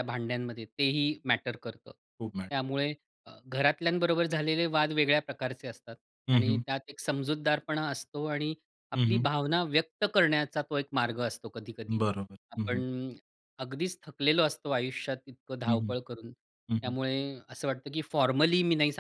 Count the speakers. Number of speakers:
two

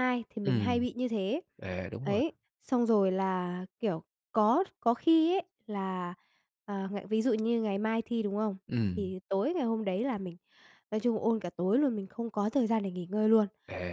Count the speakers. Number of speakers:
two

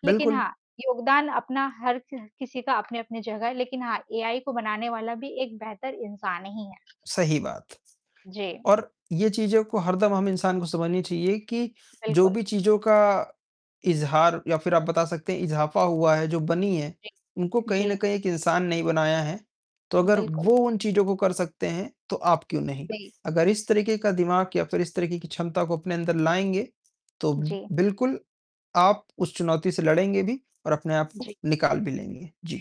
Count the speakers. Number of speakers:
two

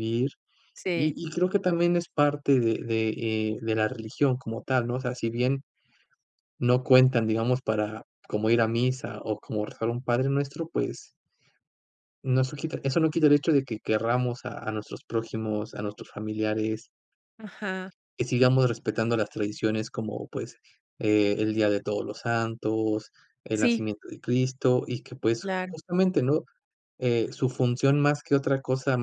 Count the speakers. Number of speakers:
two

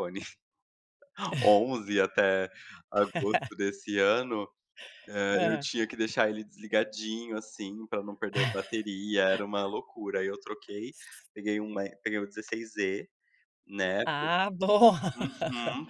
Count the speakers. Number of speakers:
two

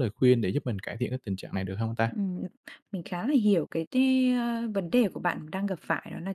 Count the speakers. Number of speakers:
two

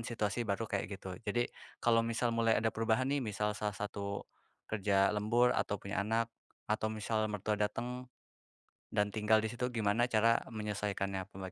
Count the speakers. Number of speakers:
one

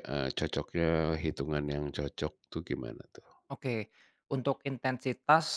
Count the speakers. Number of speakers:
two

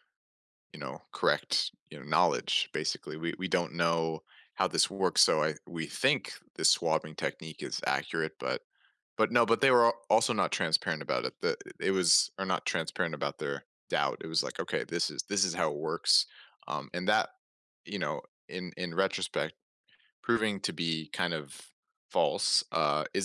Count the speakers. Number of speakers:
one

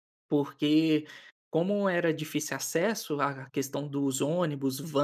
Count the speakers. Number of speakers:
one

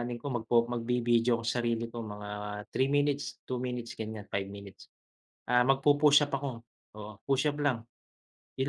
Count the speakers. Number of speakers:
one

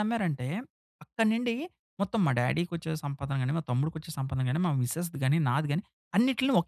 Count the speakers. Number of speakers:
one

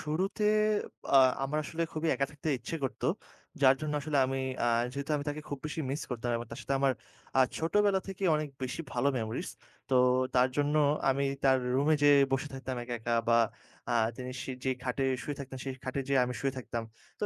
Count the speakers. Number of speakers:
one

